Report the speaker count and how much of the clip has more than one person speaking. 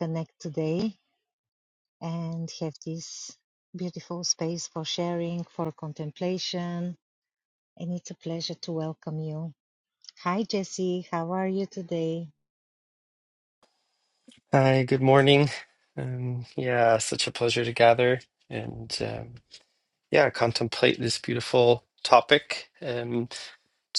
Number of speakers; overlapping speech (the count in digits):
2, no overlap